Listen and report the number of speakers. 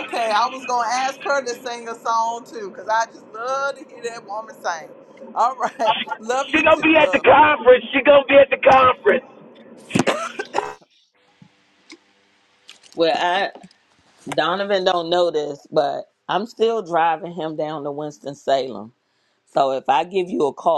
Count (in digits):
3